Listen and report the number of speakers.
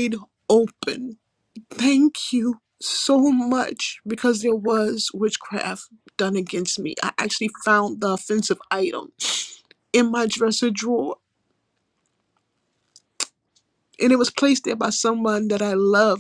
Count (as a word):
one